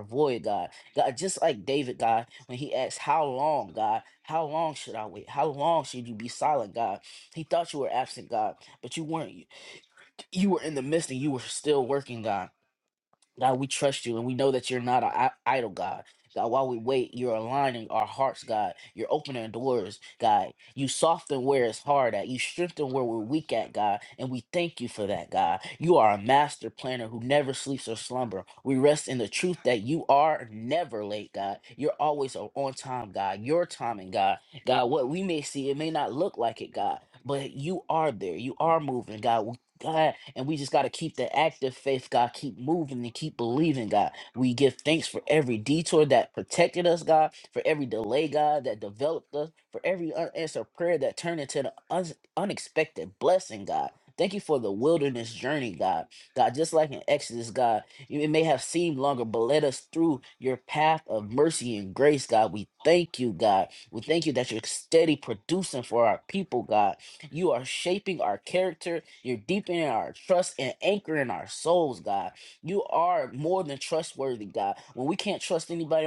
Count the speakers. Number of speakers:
one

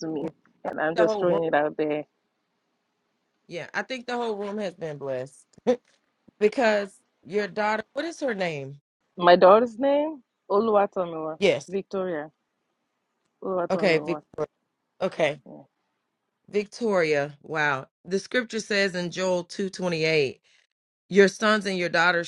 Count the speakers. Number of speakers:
two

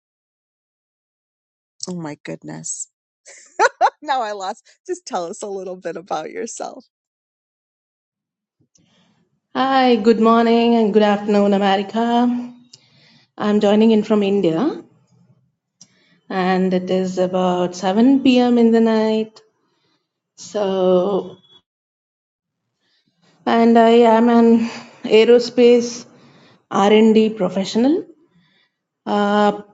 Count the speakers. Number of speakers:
two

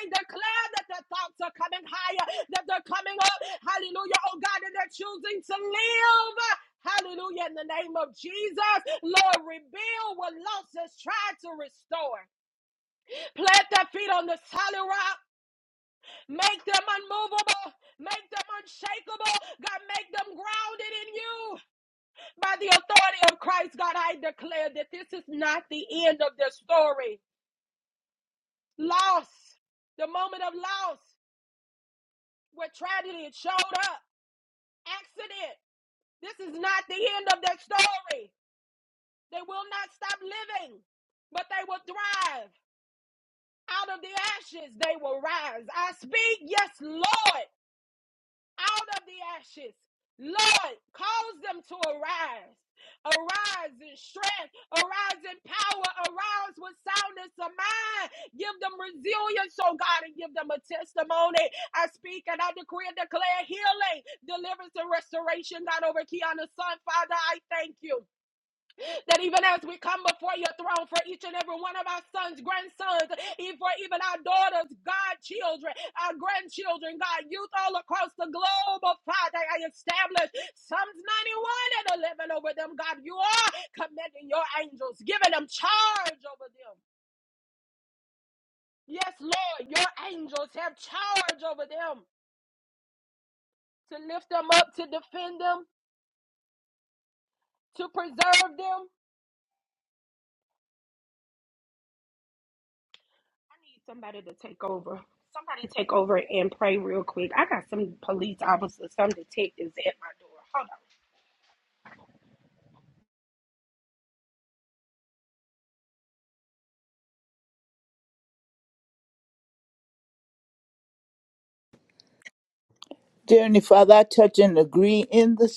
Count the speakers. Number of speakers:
two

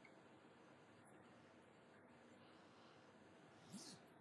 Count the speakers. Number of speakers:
zero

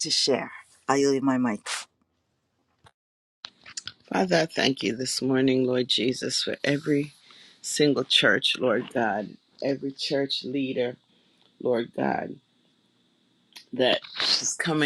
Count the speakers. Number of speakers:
two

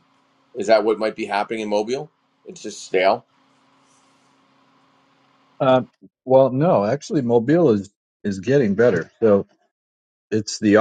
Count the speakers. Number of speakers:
two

